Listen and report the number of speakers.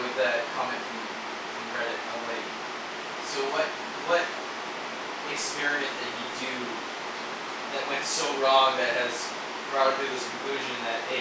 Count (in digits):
1